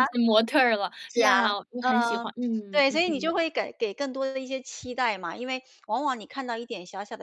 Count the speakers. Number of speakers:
two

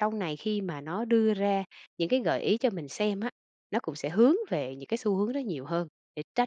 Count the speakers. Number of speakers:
one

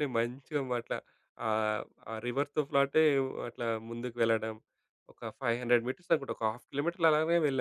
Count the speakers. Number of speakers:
one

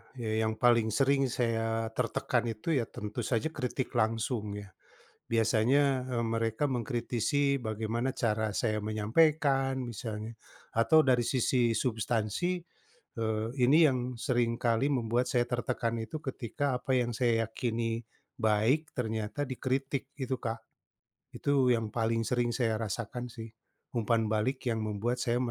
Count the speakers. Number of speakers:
one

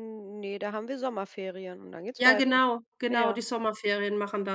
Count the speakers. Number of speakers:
two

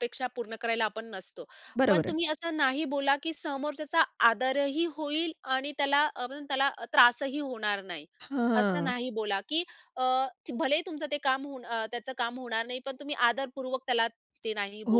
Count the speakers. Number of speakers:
two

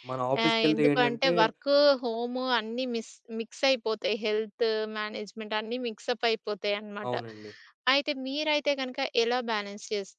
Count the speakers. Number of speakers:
two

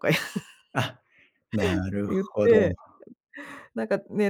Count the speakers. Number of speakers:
two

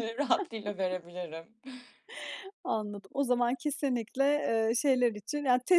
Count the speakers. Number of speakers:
two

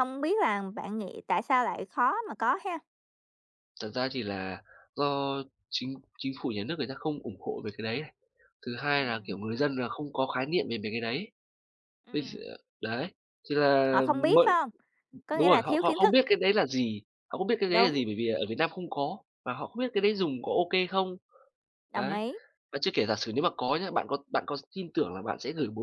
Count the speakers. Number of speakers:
two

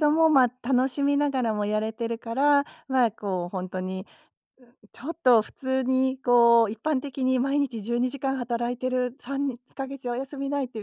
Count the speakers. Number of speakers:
one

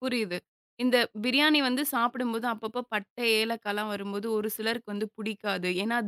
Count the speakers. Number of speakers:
one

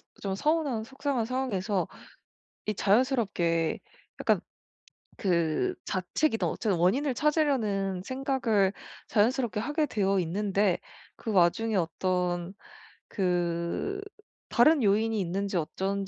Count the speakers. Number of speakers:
one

